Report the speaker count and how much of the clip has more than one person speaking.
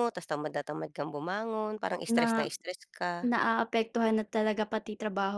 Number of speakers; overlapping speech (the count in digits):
2, about 9%